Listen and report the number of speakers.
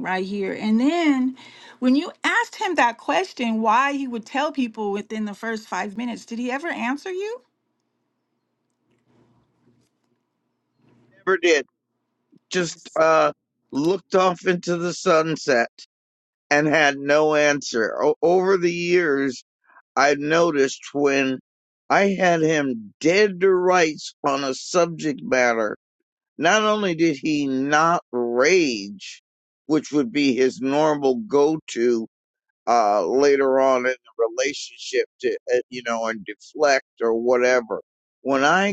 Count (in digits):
2